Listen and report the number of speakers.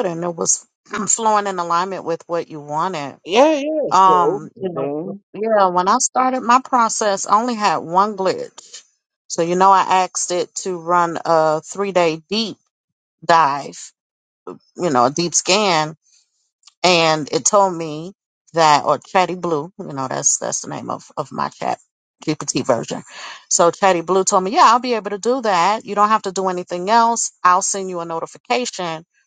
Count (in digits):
2